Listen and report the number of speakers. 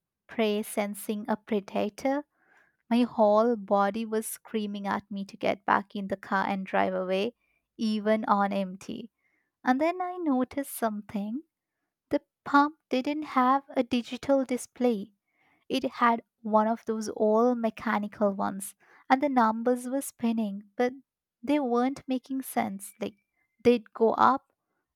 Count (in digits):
1